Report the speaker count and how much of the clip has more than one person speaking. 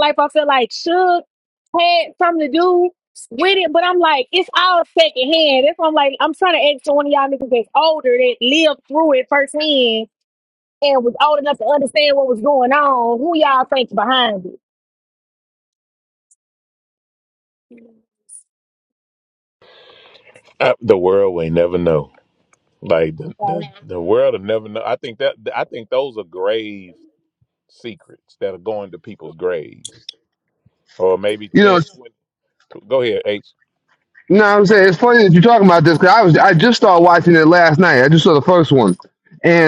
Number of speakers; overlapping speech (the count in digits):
3, about 2%